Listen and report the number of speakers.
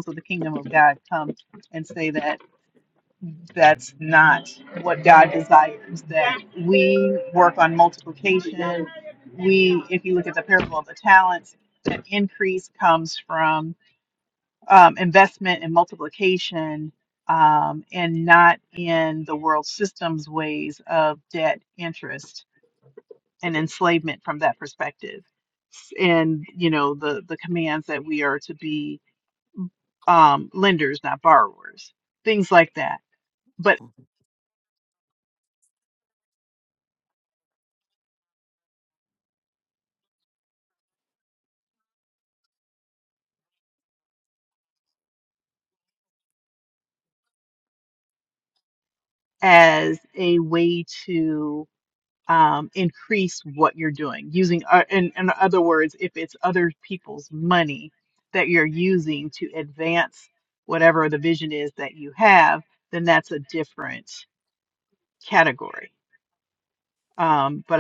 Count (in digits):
1